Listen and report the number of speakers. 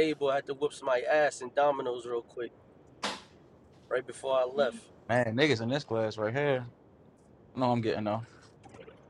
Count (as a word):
two